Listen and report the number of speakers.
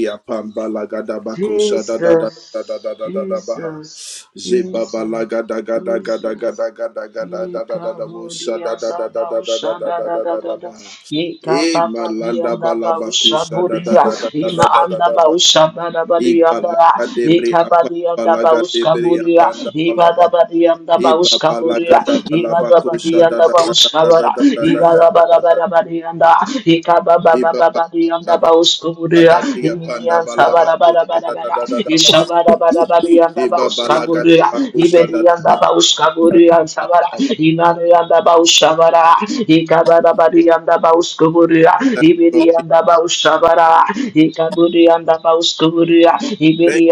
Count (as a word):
two